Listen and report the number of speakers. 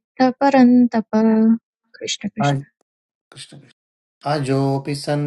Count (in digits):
2